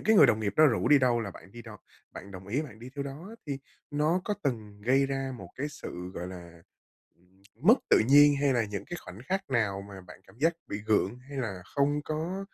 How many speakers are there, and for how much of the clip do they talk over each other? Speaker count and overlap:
1, no overlap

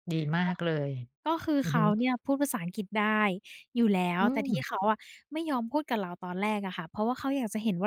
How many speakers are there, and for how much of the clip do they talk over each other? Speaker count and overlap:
2, about 9%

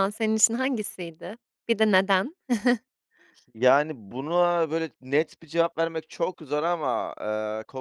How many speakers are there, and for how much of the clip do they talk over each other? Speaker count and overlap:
2, no overlap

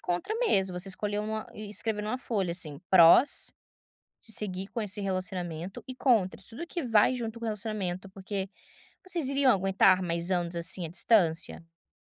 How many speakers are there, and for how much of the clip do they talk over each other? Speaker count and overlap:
1, no overlap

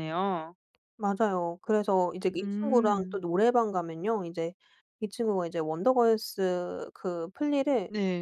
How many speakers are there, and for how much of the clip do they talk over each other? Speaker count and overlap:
2, about 9%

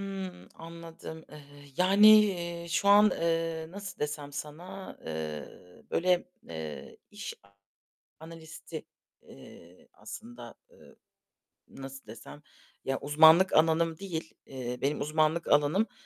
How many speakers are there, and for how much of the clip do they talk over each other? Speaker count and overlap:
1, no overlap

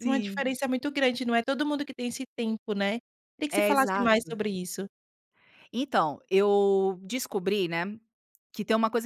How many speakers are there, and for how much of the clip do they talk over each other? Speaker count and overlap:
2, about 12%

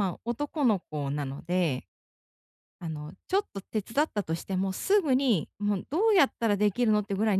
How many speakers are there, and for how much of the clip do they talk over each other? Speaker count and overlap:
1, no overlap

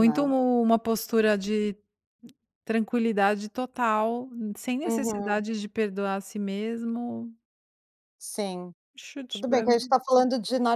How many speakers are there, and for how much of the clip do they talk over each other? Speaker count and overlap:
2, about 8%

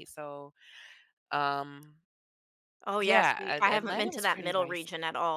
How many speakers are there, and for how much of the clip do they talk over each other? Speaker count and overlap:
2, about 32%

